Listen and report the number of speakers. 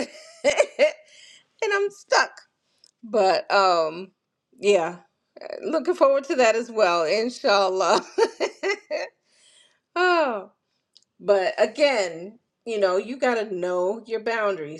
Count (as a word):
one